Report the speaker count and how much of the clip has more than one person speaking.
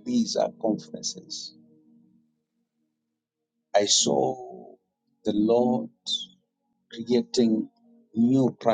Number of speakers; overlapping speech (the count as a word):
one, no overlap